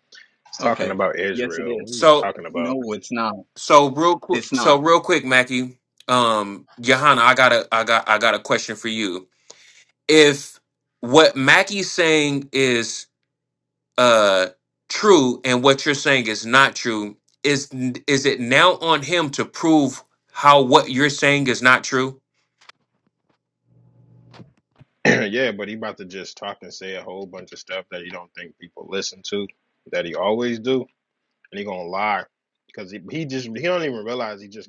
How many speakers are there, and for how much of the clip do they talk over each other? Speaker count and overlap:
3, about 5%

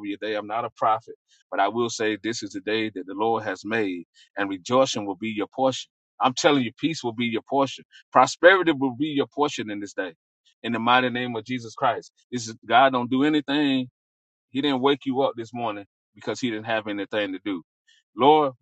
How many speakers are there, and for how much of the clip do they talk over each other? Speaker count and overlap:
1, no overlap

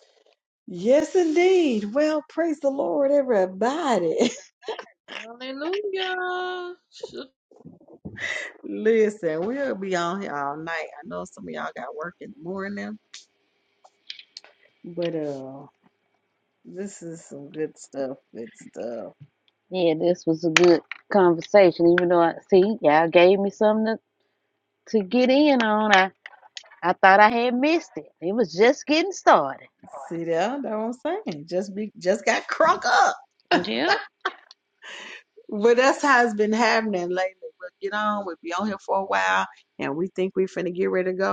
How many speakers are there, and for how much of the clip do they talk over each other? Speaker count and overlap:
3, no overlap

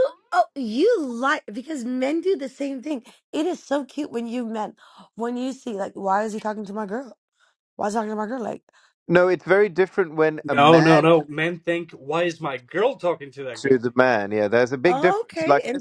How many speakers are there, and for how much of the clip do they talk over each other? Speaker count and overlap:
3, about 9%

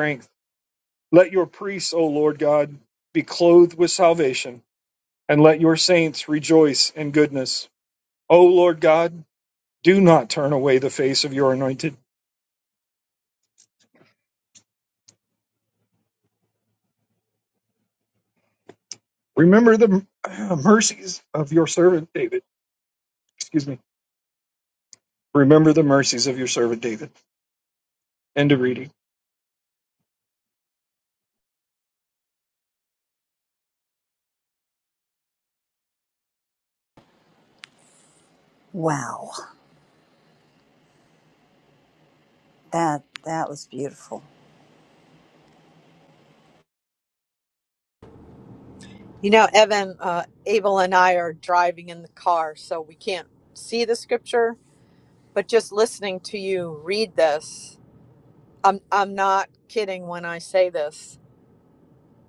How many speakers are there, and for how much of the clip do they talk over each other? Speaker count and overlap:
3, no overlap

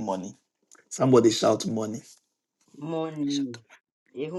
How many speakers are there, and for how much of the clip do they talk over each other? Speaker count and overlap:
2, no overlap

